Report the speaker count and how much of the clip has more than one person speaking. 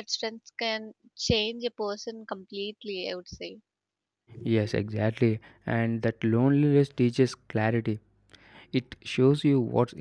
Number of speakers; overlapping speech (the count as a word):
two, no overlap